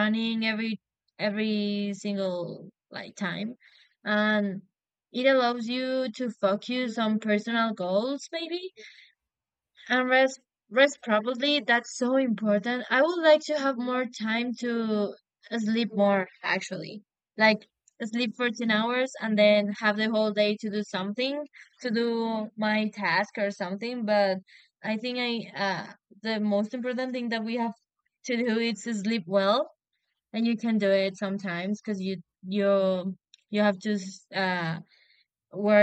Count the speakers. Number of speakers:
1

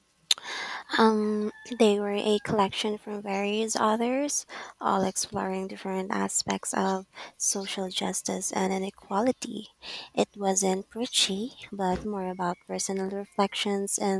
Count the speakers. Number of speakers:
1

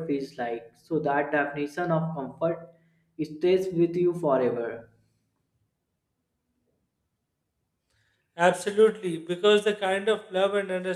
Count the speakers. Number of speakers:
2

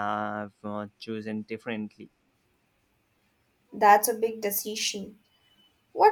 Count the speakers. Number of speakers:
2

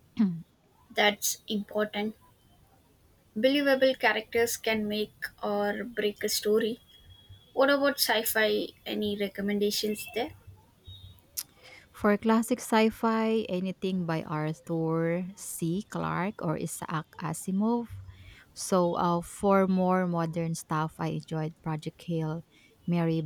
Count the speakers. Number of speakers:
2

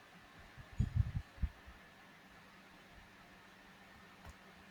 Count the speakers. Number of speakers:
0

